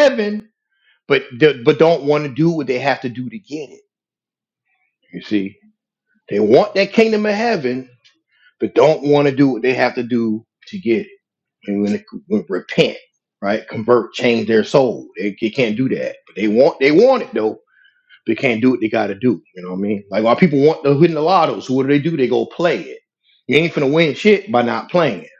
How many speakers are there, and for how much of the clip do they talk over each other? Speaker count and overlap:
1, no overlap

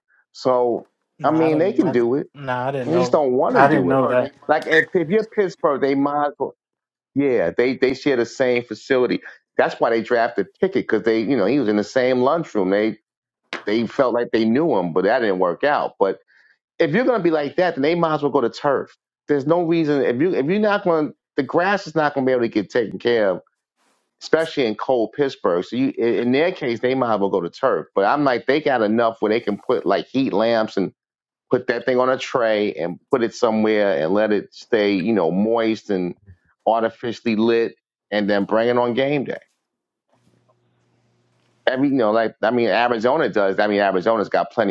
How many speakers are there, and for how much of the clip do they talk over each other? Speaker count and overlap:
2, about 4%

